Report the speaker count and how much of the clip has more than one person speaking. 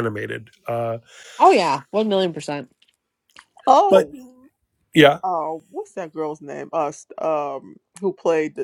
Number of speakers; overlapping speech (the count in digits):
3, about 3%